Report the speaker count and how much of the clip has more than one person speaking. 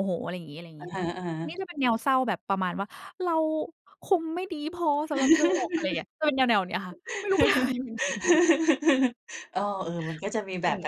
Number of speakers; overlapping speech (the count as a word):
two, about 5%